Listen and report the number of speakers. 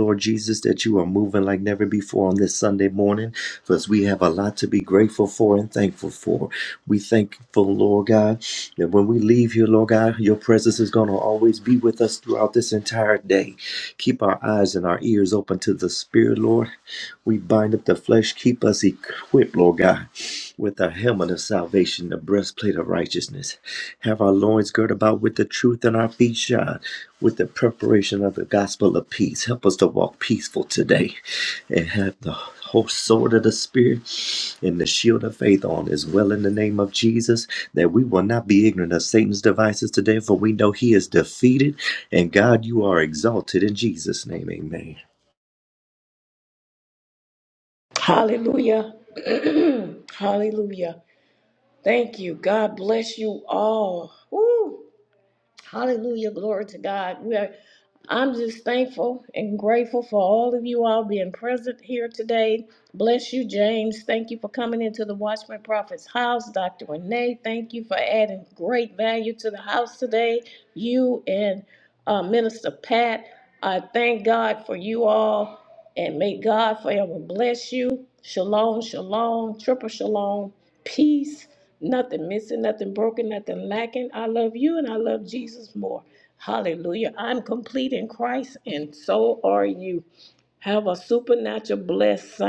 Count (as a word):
two